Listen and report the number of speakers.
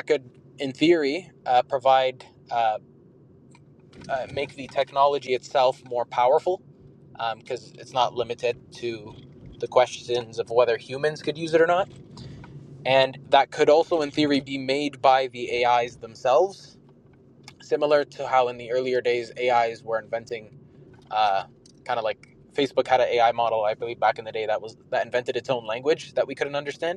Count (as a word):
one